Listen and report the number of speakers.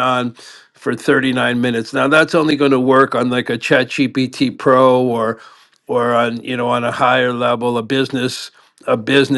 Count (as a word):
one